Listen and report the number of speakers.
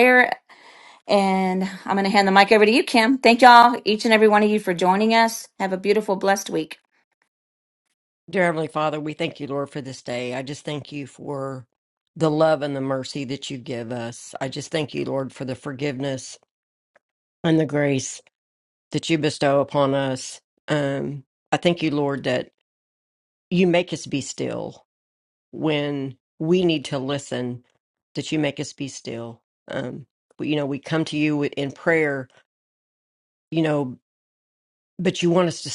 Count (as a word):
two